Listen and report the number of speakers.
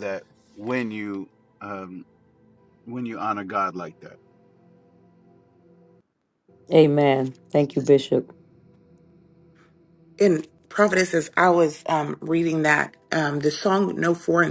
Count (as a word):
three